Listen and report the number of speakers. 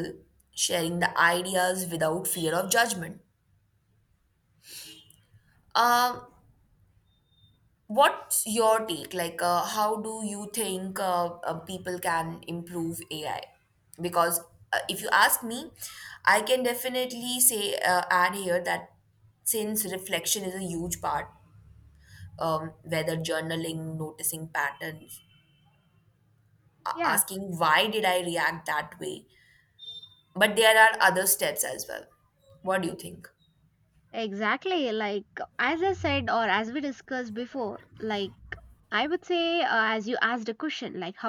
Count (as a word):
two